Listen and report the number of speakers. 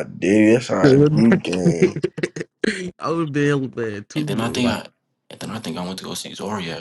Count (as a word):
three